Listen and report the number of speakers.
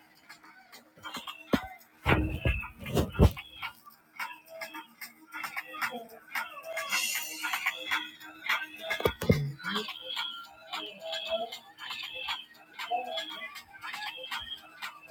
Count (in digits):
0